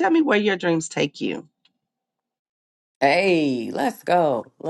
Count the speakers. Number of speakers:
two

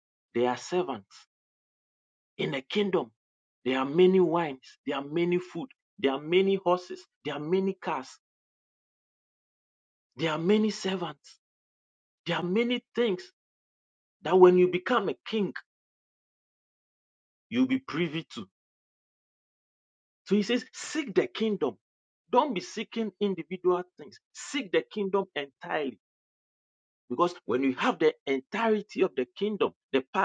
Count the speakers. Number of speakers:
one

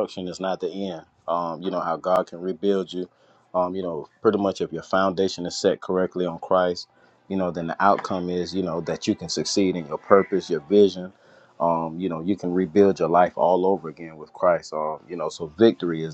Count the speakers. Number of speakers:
one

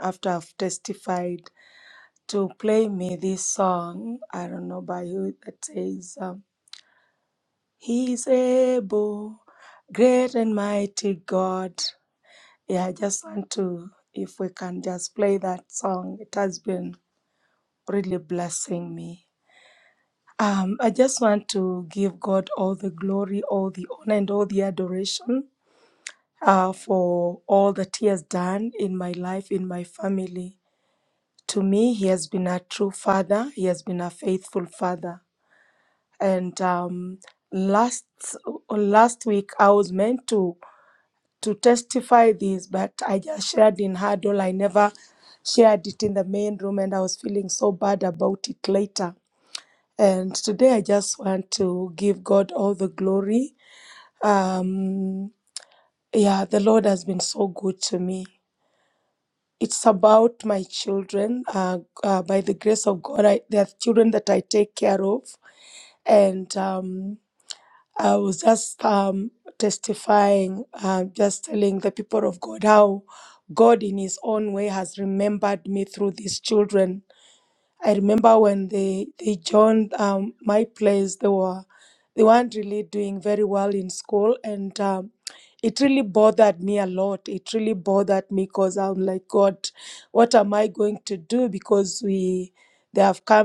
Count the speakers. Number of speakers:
one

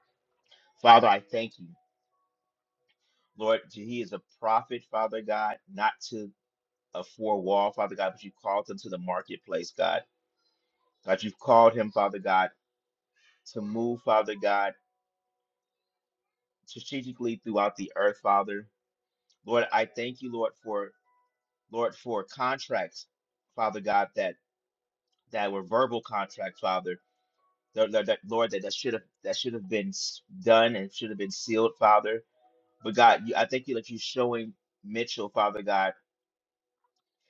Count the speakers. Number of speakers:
one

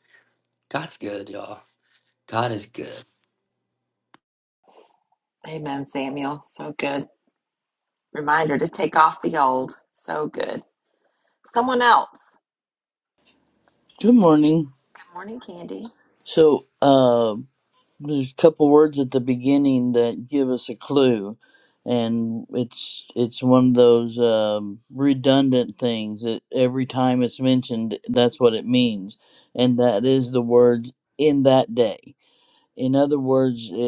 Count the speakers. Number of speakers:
three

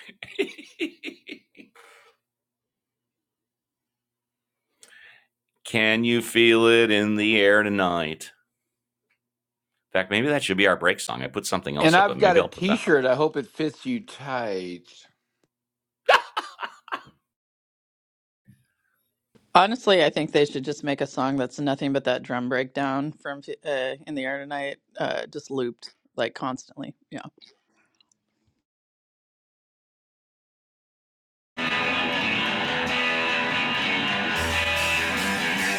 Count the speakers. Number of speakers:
three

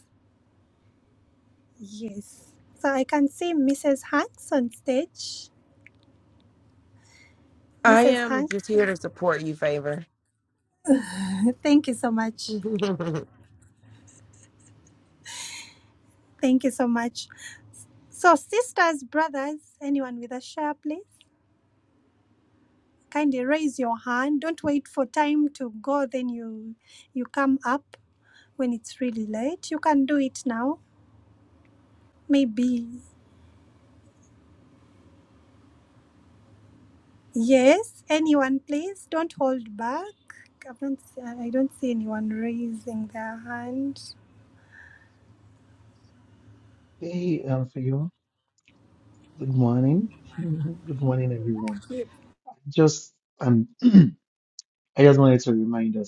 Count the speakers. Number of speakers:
three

